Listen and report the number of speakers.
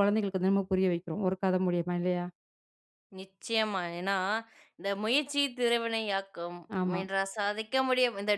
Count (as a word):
two